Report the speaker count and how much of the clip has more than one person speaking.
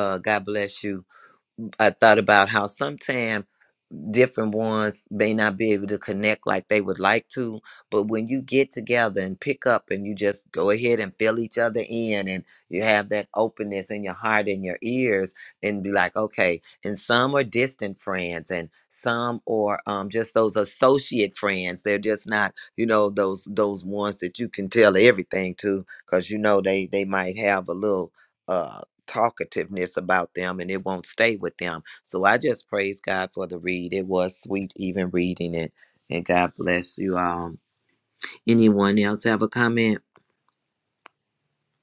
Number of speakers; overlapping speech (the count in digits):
1, no overlap